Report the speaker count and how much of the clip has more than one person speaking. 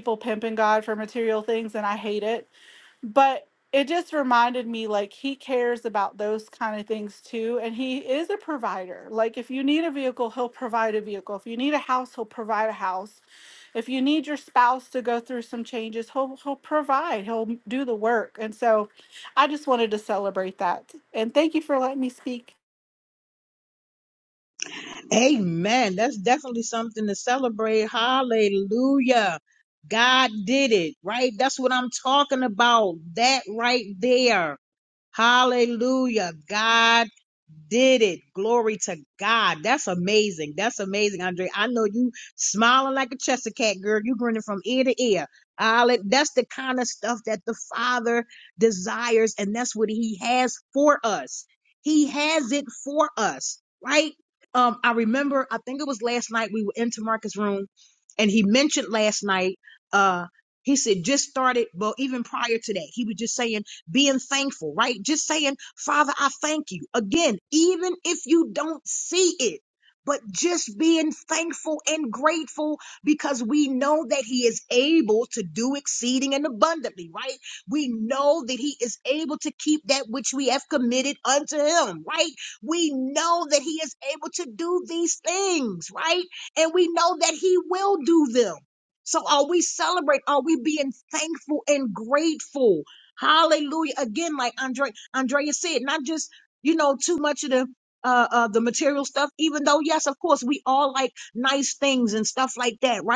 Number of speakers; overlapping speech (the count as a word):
two, no overlap